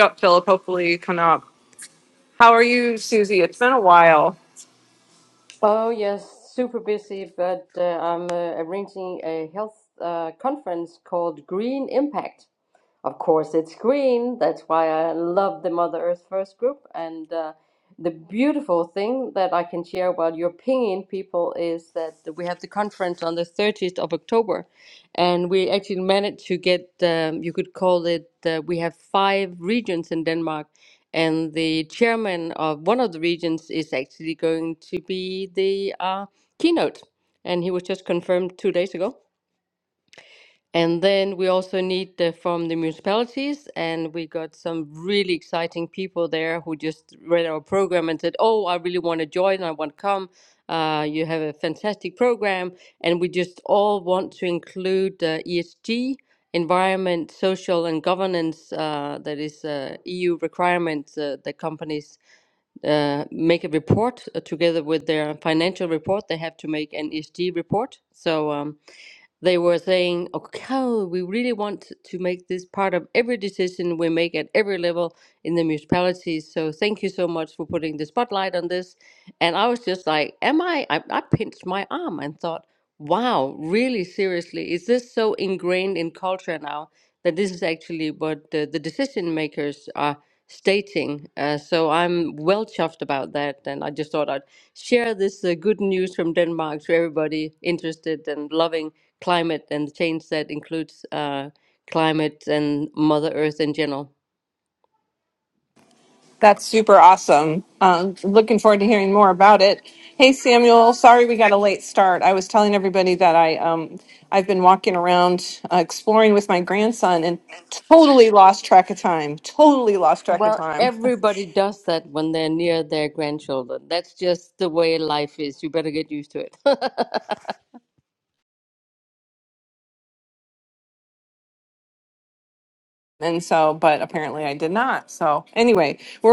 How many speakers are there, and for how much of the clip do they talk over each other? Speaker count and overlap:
2, under 1%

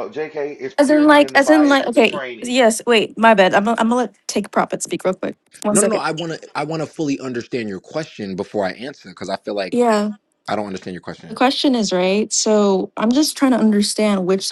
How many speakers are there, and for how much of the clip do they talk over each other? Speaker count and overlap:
3, about 14%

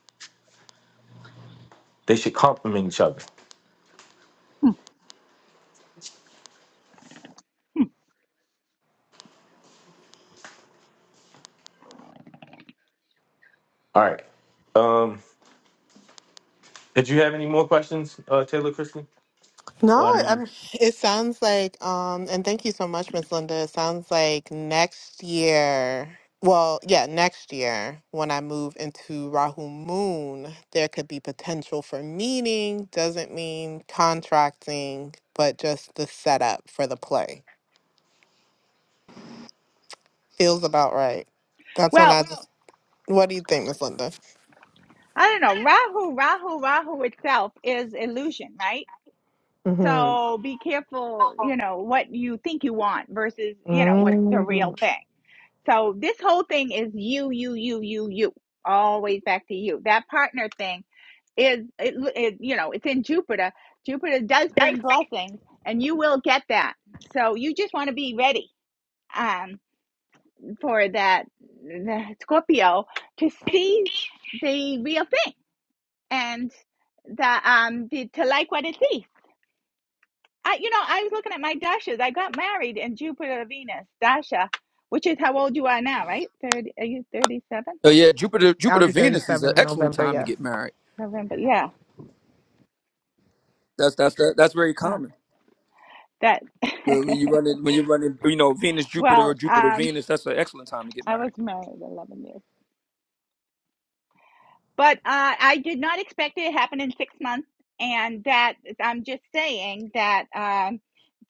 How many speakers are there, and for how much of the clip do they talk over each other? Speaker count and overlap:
4, about 5%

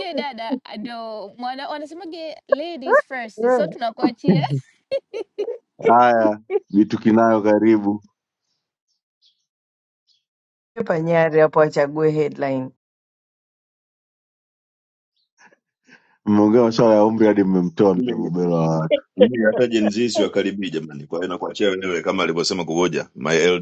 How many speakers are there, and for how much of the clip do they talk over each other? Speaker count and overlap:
4, about 3%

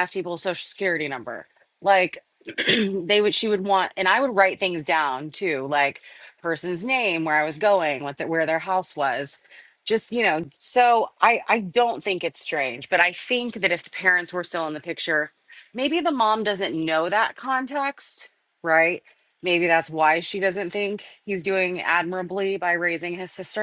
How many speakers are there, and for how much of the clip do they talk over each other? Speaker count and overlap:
1, no overlap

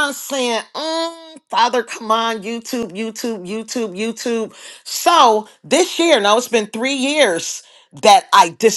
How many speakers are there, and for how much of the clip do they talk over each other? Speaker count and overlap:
1, no overlap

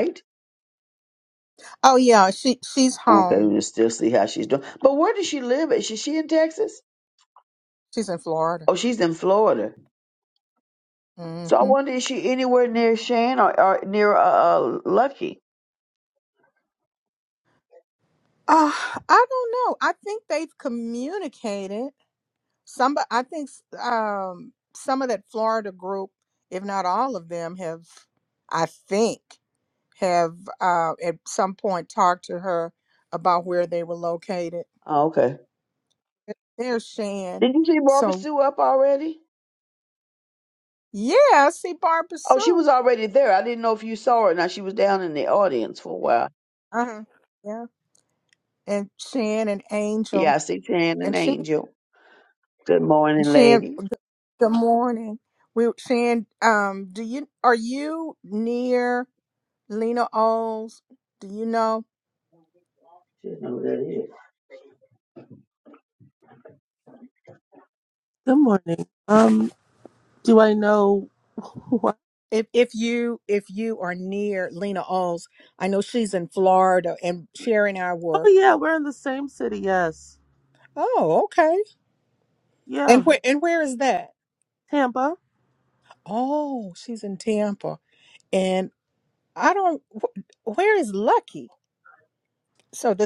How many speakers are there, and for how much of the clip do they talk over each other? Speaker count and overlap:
3, about 3%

